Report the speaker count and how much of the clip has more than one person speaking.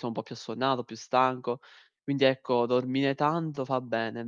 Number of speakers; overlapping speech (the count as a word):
one, no overlap